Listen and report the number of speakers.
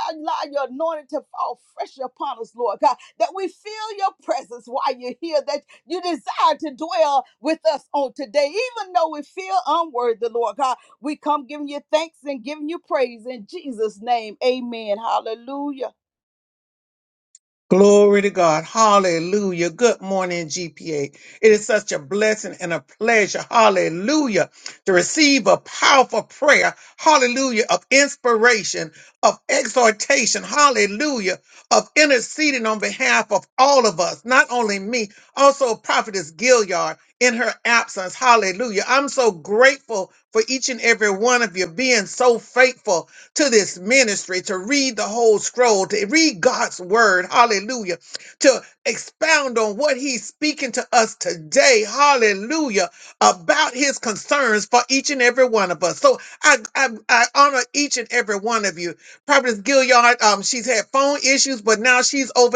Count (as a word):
two